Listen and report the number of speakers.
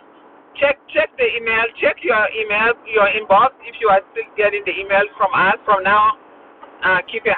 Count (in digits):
1